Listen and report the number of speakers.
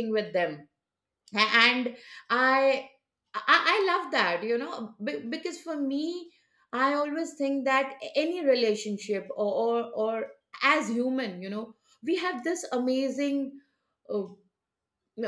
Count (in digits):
1